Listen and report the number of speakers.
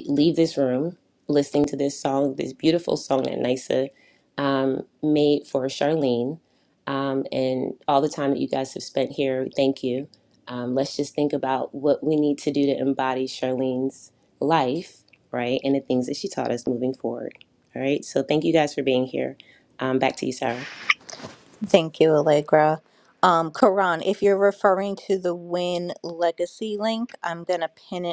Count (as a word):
two